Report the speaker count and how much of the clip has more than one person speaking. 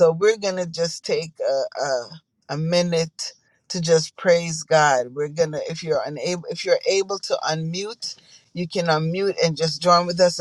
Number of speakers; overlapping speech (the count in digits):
1, no overlap